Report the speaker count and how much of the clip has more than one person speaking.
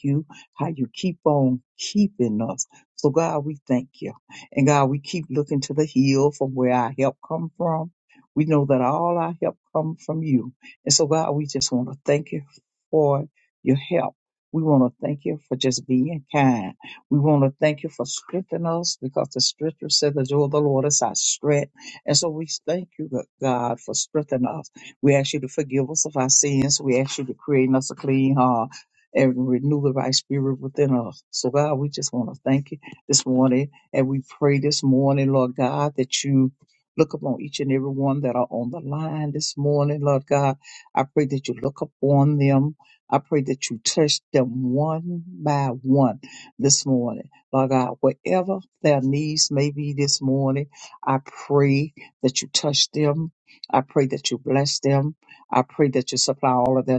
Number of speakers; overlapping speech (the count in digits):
1, no overlap